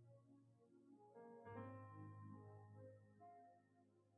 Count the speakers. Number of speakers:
zero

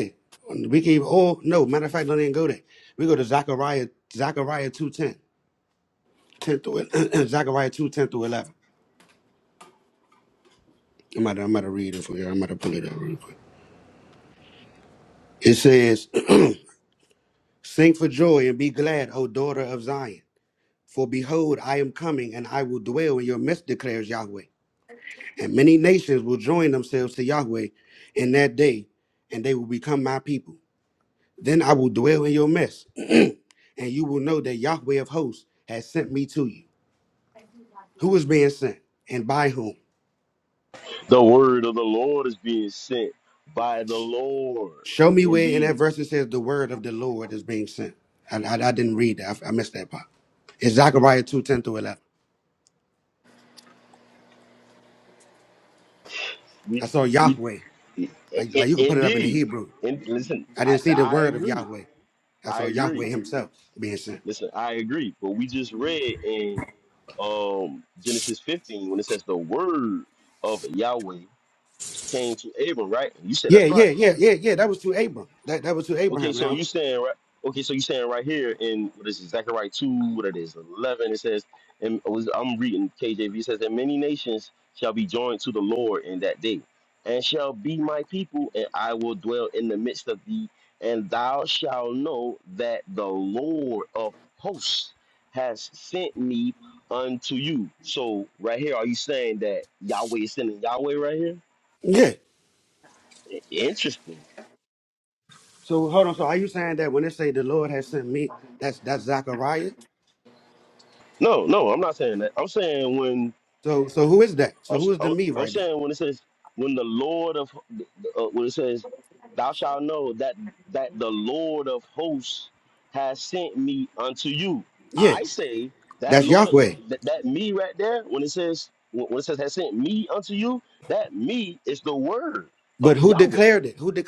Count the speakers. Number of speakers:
two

